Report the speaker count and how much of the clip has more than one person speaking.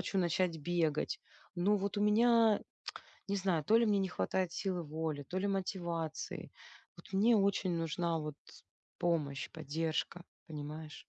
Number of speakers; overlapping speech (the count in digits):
1, no overlap